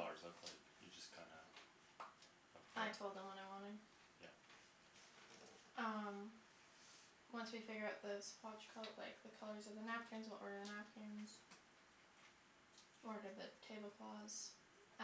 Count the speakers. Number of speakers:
2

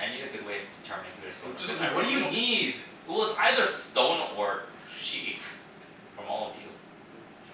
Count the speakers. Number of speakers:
2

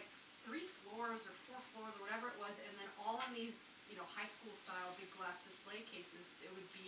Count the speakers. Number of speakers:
1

